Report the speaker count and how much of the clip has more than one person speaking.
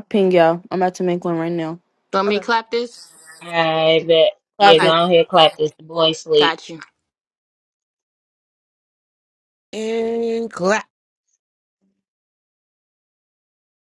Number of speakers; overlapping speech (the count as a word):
four, about 5%